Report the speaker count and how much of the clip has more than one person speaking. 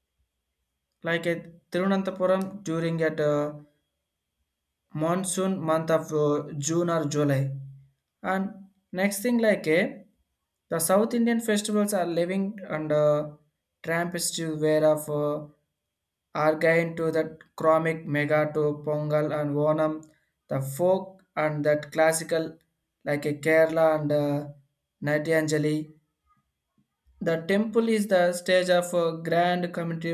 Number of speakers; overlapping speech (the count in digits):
1, no overlap